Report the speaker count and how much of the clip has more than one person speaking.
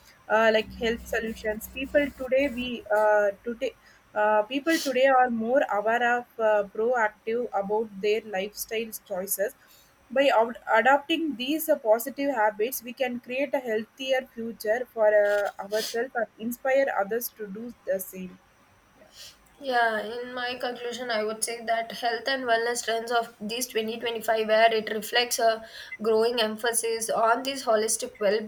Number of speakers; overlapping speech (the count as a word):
two, no overlap